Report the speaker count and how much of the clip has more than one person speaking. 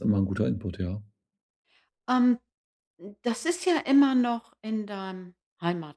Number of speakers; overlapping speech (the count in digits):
2, no overlap